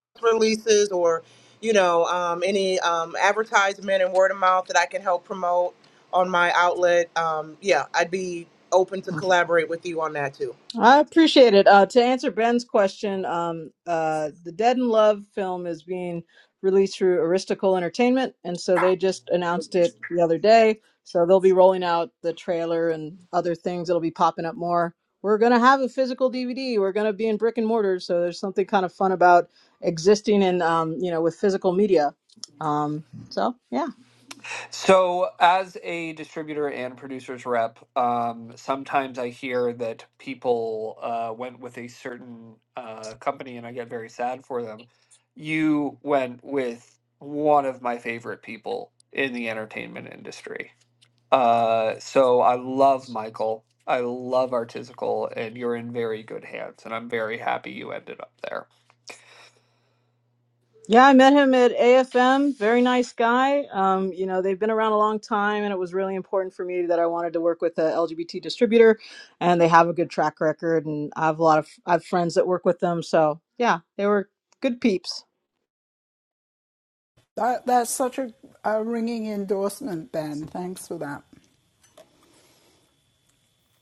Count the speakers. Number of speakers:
4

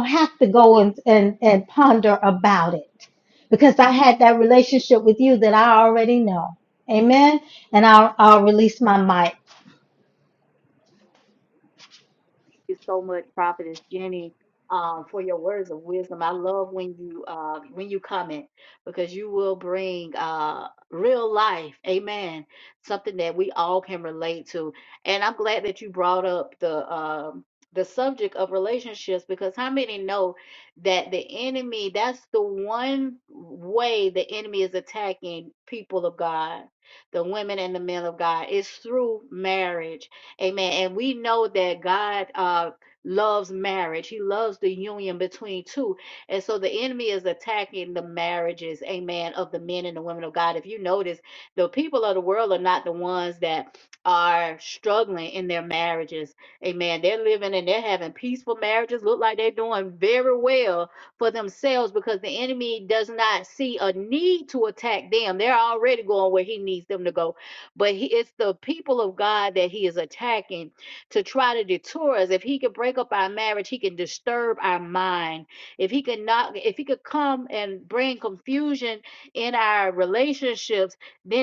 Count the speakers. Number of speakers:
2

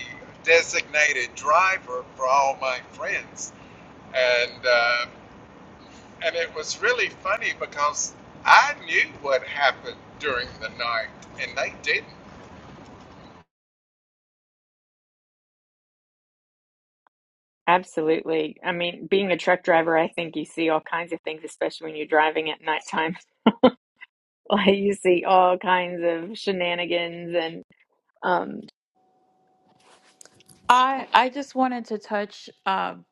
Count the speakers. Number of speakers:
3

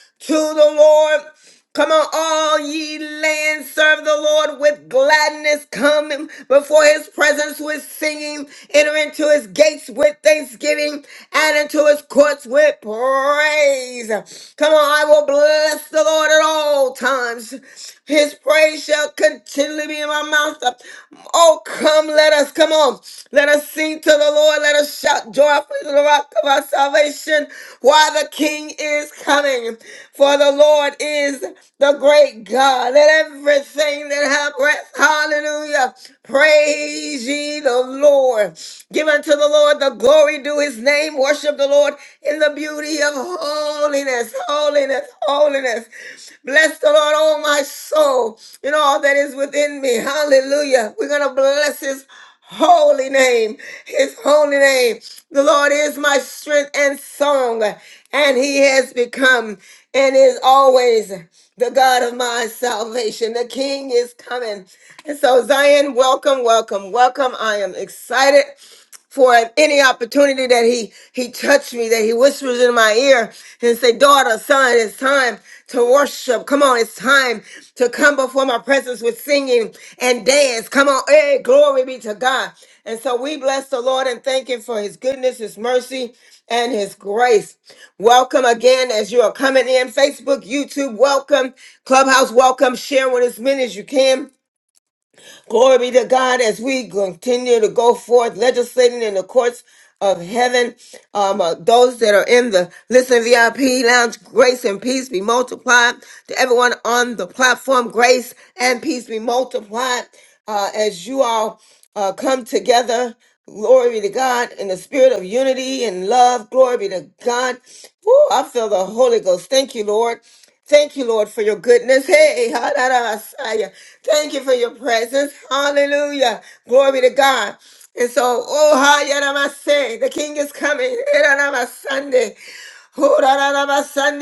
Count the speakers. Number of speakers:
1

